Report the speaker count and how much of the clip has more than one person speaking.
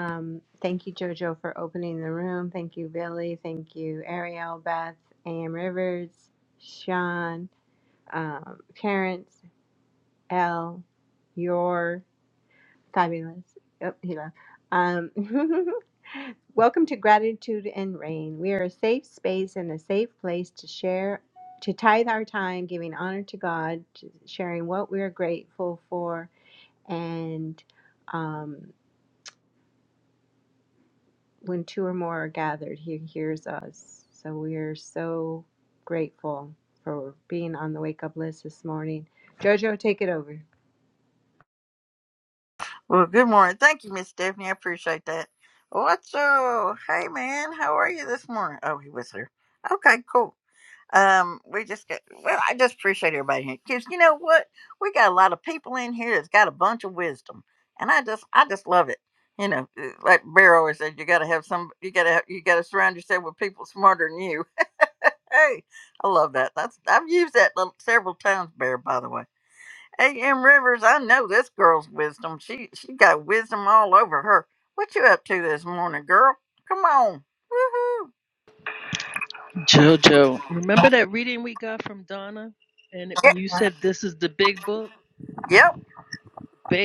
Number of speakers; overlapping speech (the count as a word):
three, under 1%